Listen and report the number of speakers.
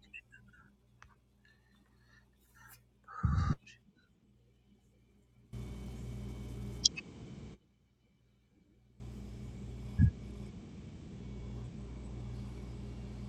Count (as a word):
zero